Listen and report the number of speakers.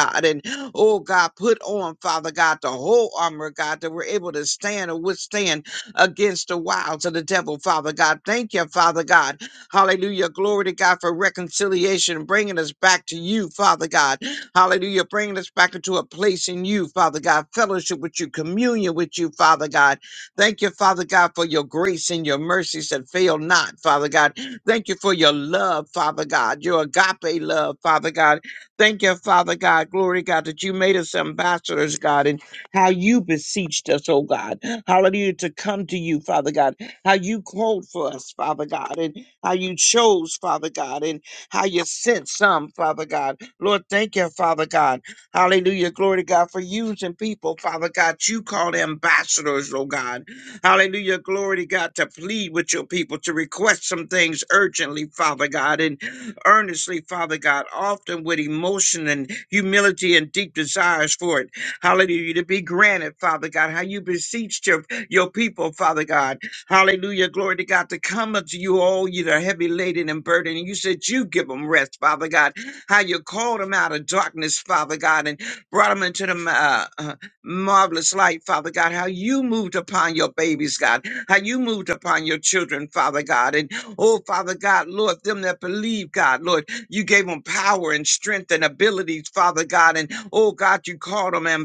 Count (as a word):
one